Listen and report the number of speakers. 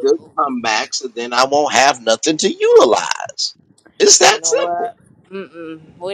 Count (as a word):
two